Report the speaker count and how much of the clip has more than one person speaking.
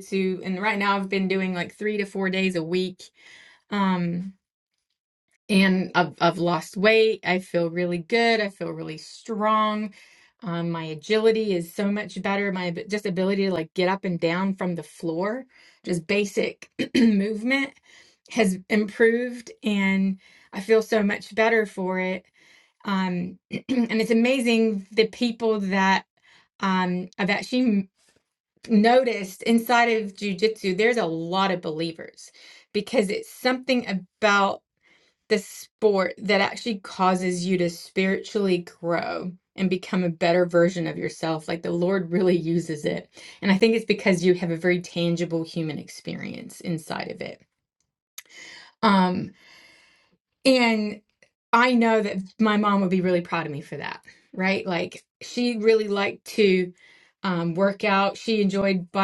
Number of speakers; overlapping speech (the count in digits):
1, no overlap